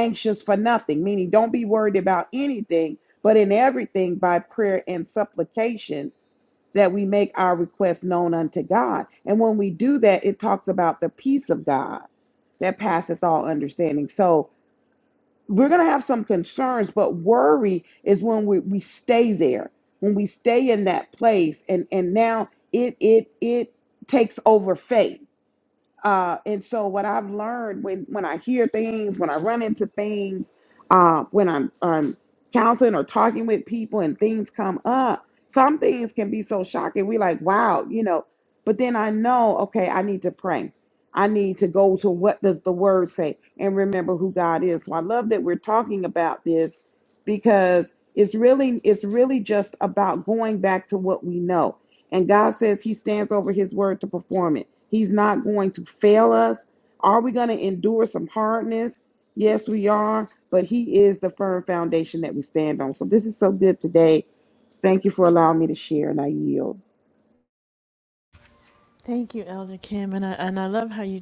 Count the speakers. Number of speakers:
2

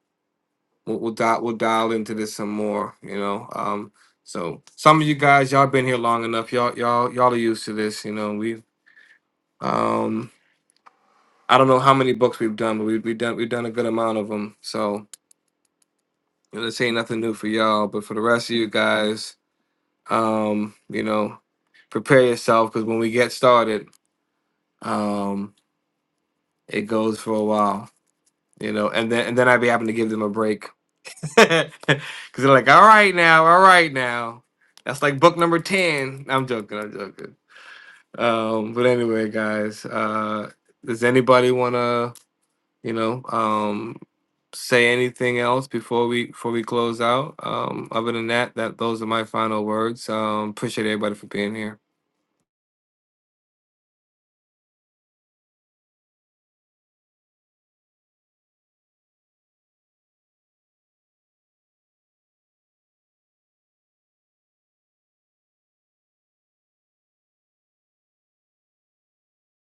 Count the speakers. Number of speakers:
1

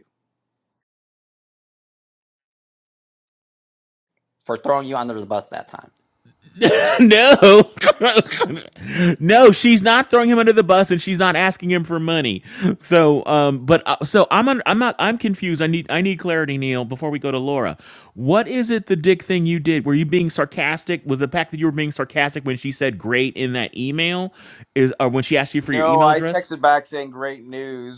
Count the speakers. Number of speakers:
3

